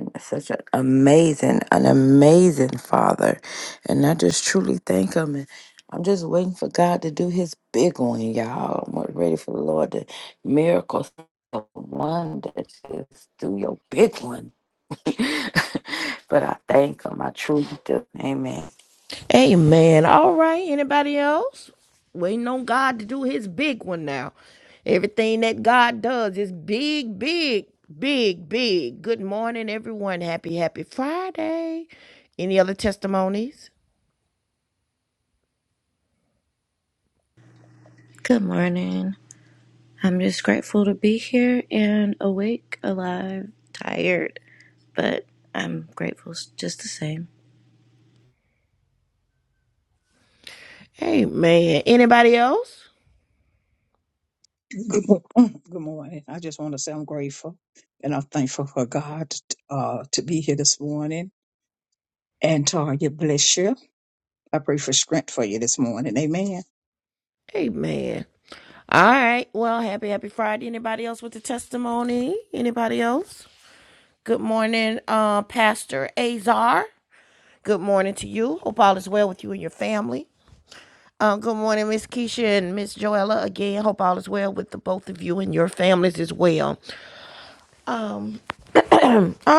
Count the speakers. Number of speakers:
4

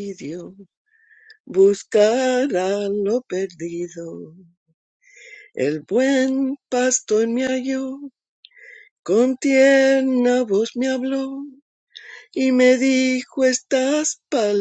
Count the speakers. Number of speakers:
1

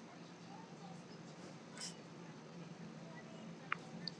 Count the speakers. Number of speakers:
0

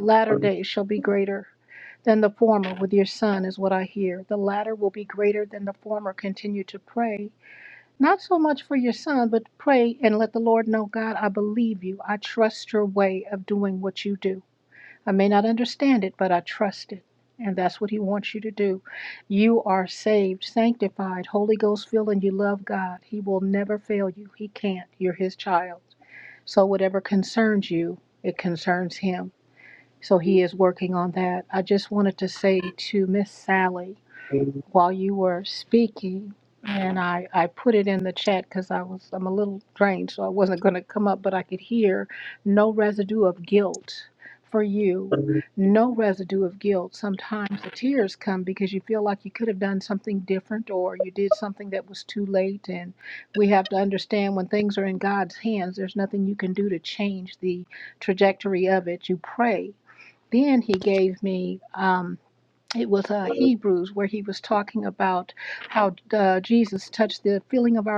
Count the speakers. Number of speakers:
1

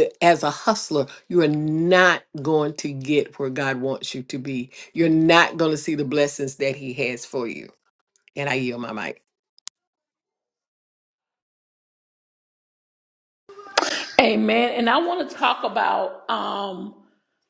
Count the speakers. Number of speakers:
2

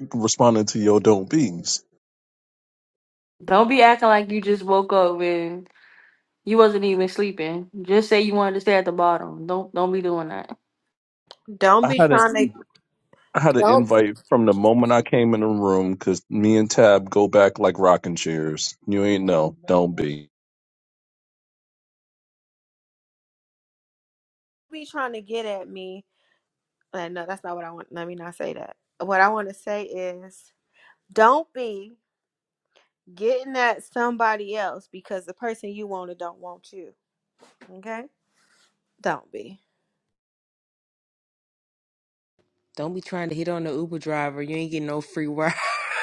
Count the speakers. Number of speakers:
4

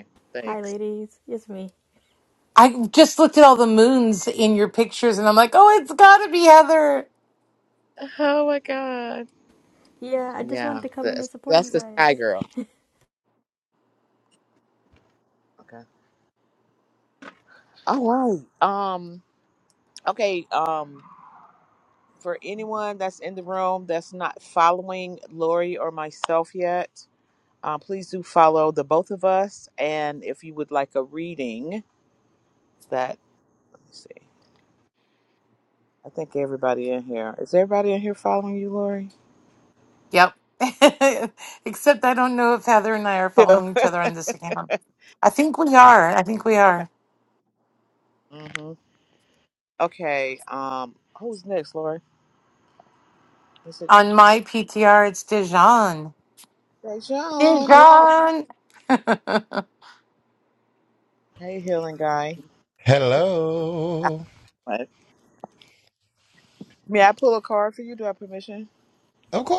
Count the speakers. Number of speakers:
4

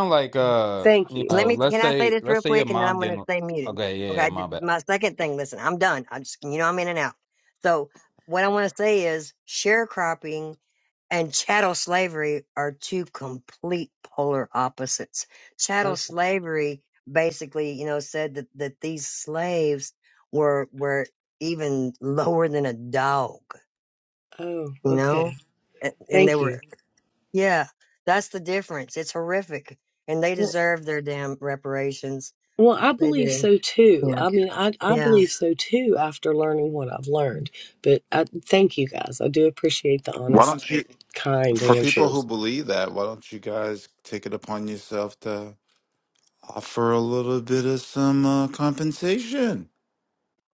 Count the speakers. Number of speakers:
4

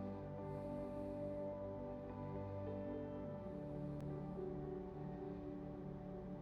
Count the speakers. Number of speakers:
0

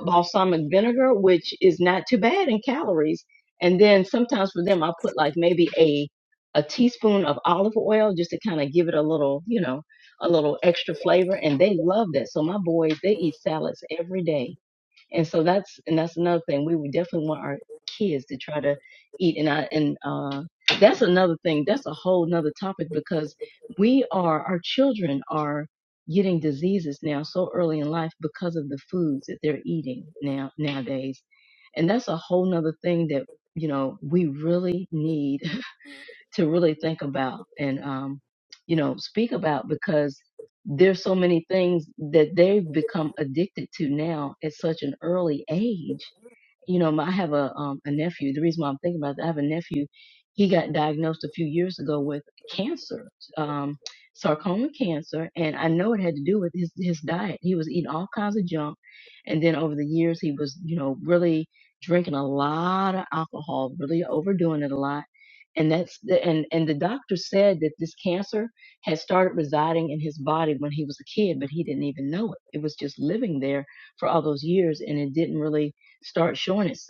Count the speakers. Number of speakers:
1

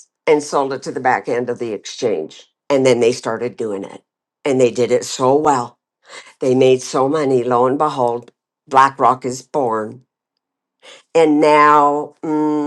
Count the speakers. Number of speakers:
1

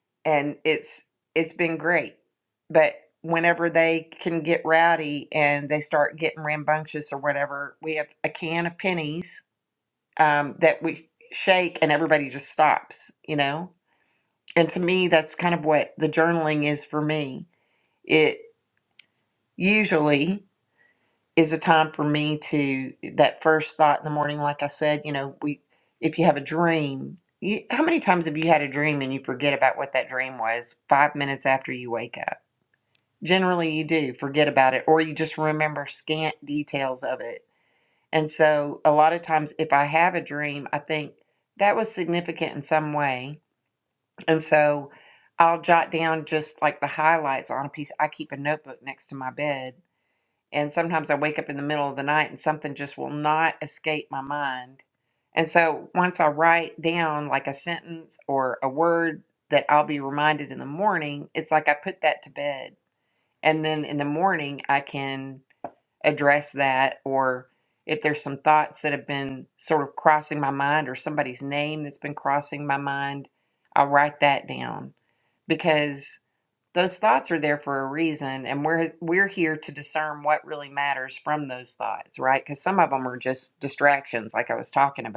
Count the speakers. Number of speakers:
1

